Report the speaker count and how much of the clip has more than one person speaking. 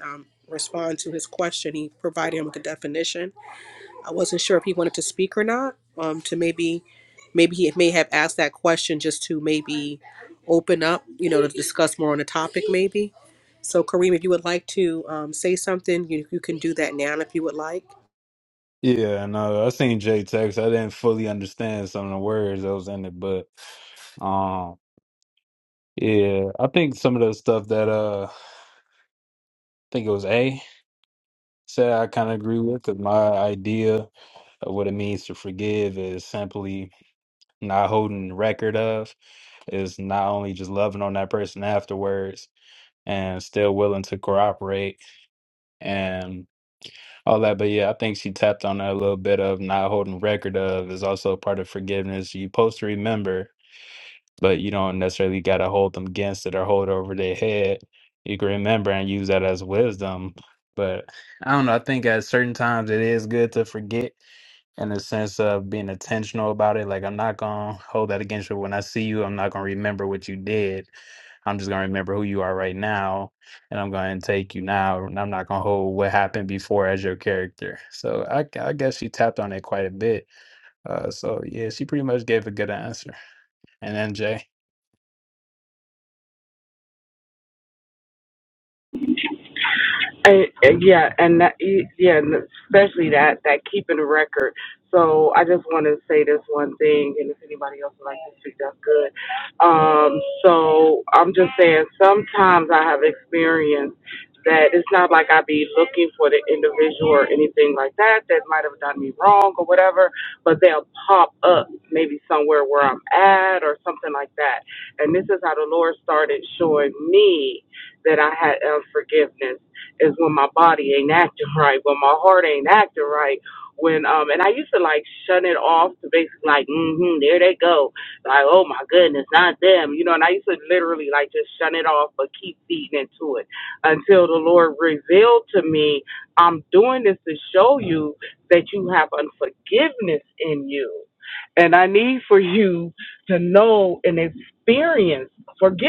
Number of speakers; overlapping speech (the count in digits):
3, no overlap